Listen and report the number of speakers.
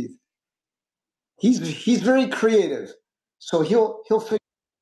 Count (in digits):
1